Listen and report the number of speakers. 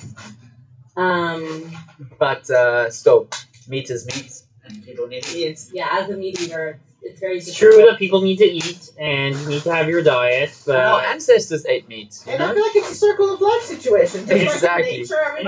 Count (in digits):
4